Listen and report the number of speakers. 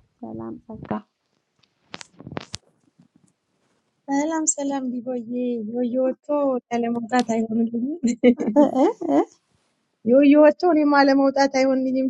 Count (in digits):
2